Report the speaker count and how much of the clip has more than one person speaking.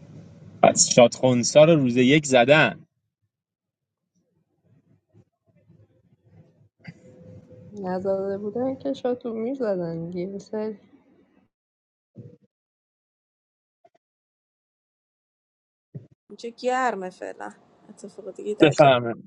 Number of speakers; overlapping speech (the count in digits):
3, about 2%